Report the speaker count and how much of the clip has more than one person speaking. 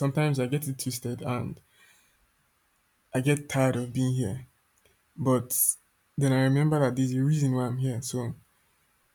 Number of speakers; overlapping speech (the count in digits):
1, no overlap